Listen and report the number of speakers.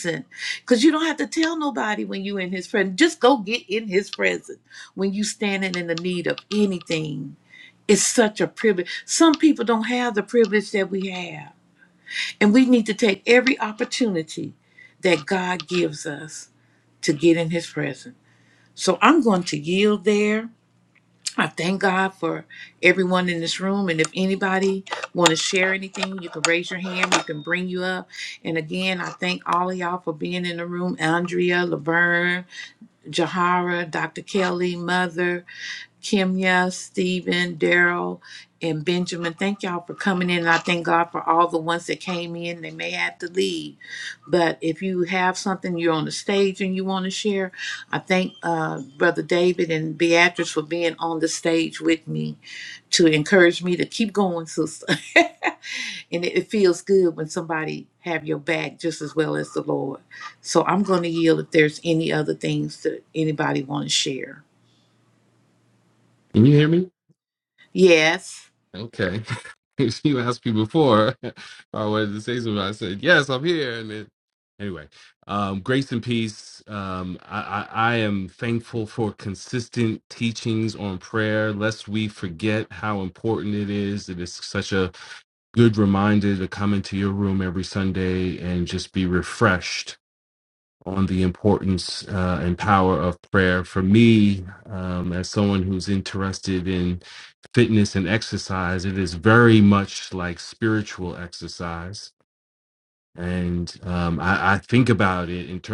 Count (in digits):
2